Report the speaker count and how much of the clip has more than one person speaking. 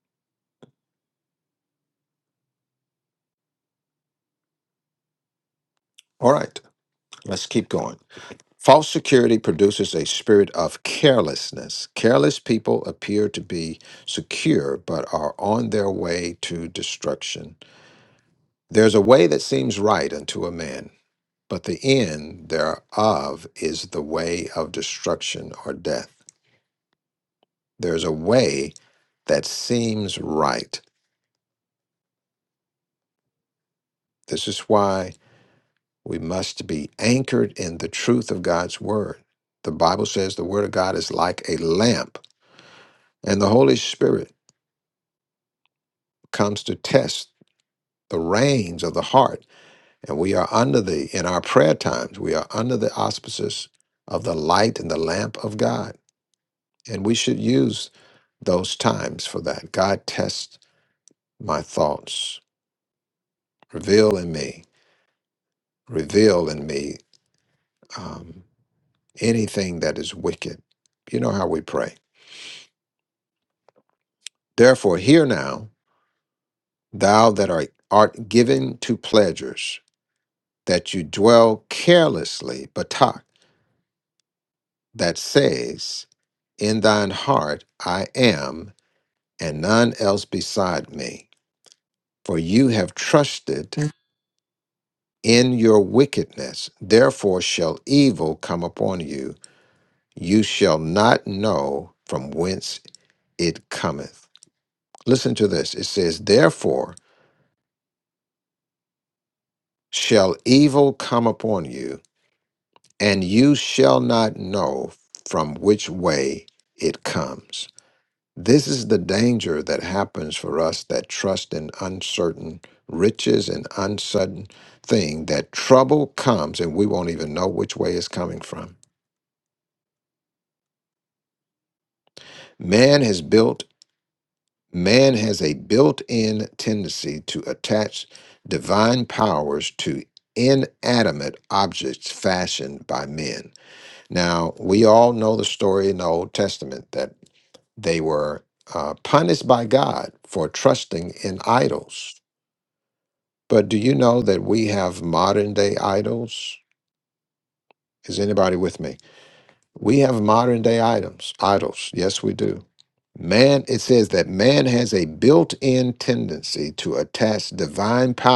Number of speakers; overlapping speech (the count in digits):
1, no overlap